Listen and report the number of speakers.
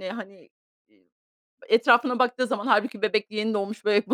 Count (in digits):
1